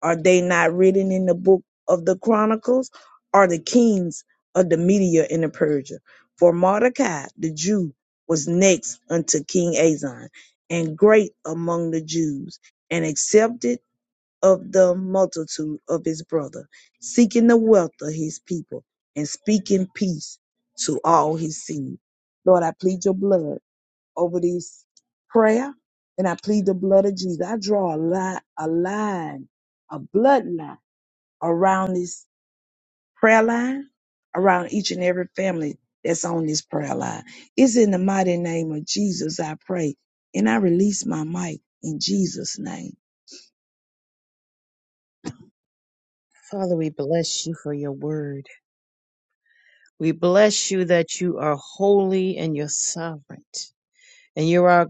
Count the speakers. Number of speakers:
2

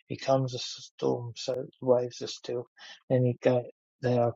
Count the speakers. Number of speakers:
1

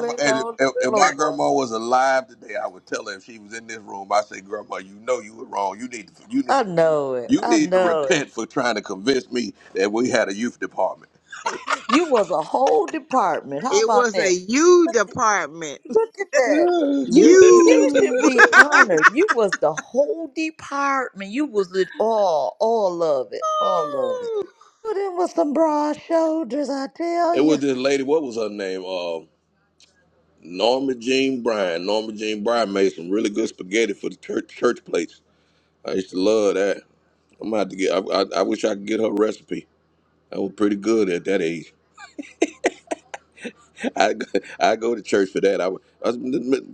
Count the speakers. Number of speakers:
3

